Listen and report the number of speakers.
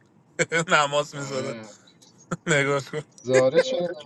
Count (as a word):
two